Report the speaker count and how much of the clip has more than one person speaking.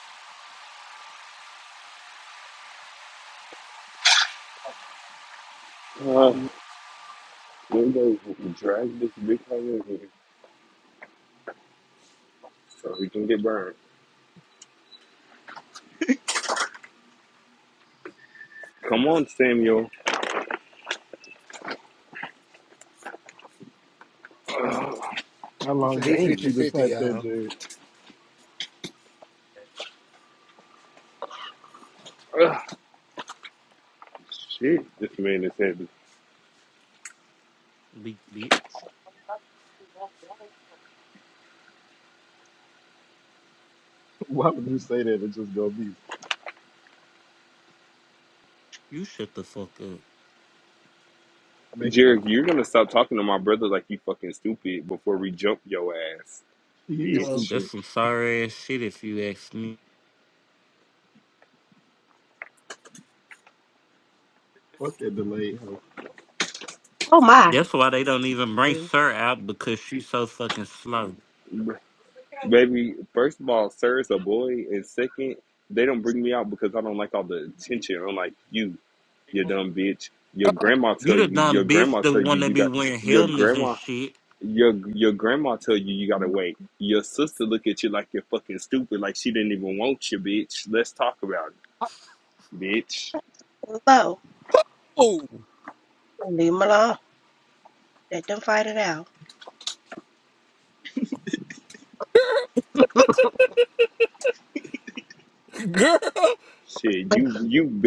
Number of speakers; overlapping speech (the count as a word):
five, about 4%